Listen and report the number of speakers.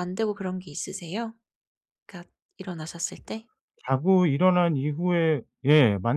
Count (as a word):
two